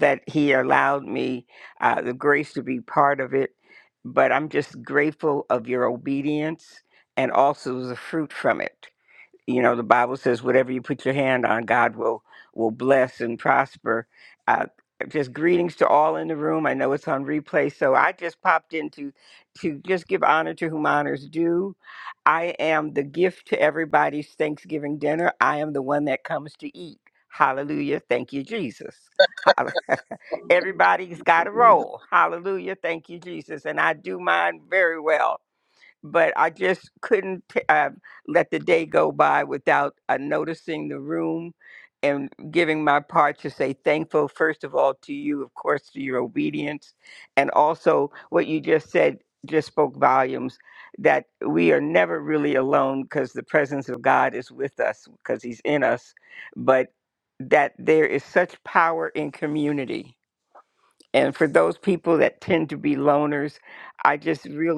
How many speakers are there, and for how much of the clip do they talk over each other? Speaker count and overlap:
1, no overlap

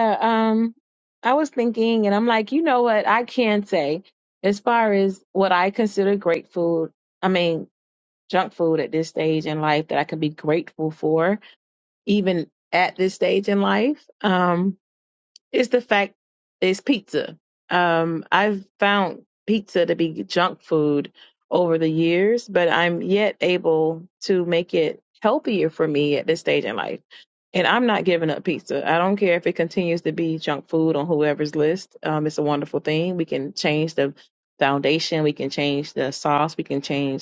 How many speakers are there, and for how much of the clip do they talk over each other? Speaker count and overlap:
1, no overlap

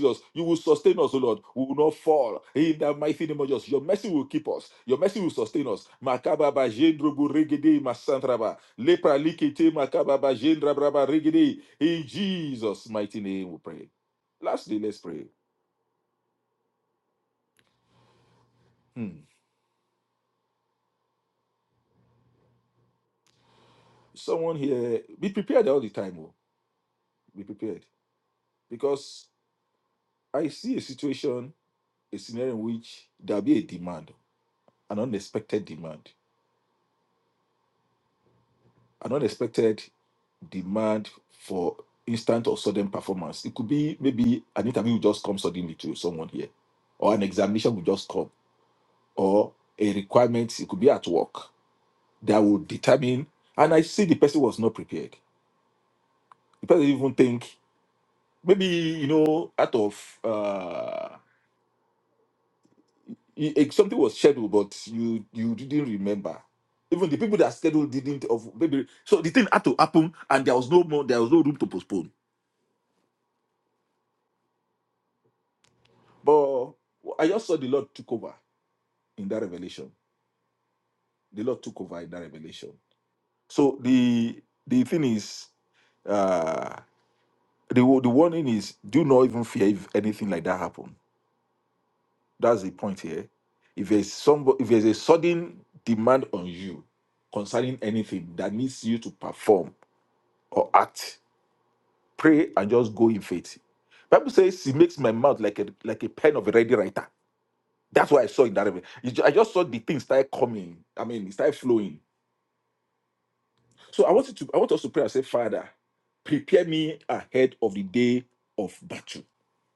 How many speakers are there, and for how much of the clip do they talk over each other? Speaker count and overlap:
1, no overlap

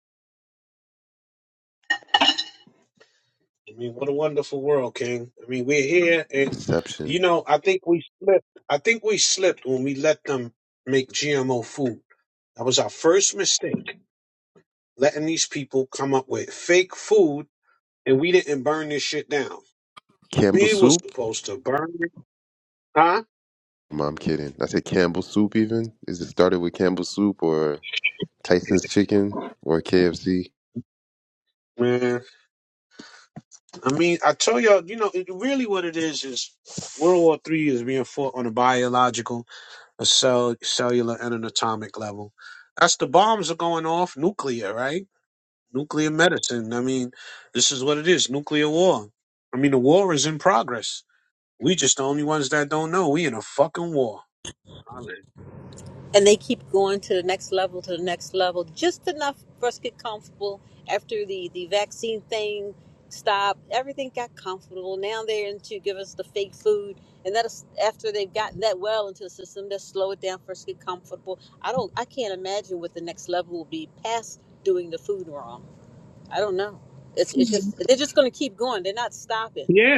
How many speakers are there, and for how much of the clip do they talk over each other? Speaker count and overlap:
3, about 1%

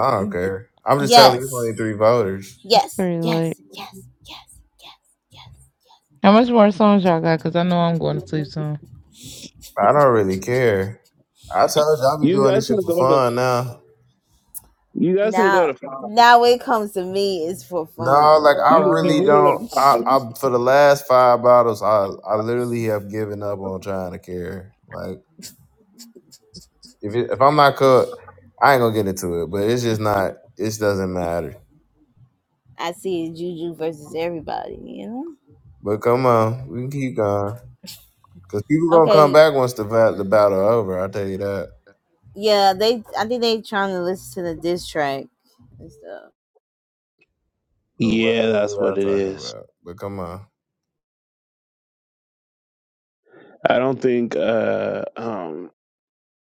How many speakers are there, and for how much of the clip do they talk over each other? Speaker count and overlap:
4, about 12%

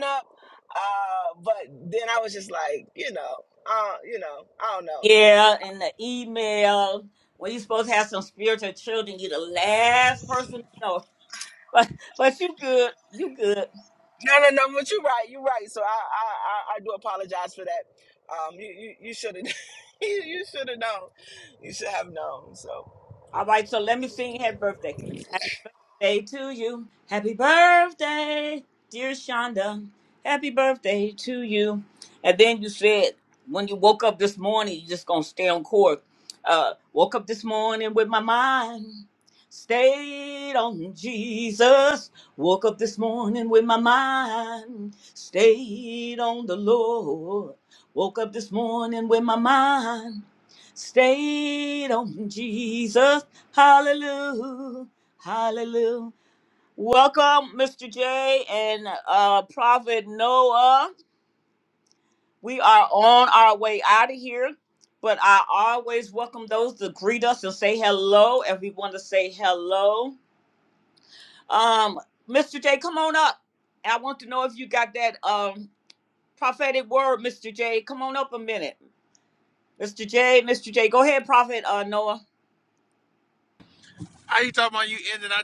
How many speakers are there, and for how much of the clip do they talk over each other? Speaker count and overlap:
3, under 1%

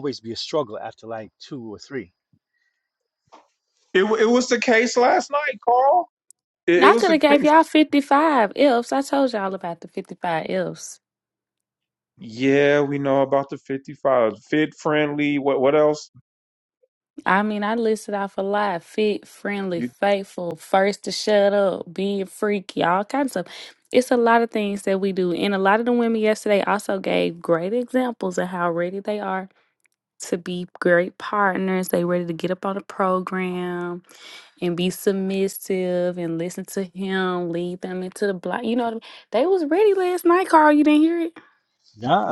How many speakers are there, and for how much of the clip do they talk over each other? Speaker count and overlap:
3, about 2%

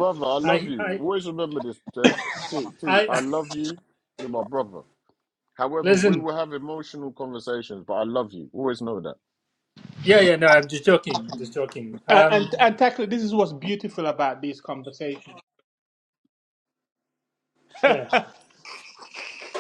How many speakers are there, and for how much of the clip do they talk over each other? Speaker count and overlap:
3, about 9%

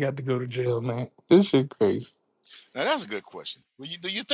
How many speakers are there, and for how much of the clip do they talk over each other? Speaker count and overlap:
2, no overlap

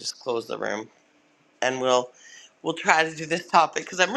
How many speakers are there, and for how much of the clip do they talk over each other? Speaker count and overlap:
1, no overlap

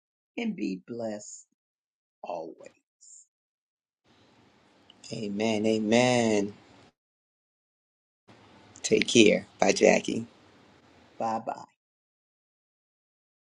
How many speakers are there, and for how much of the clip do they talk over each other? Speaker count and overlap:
2, no overlap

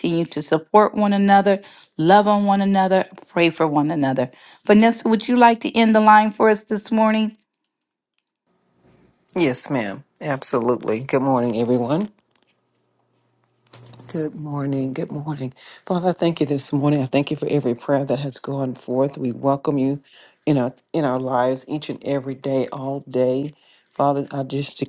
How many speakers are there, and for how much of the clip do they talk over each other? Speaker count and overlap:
2, no overlap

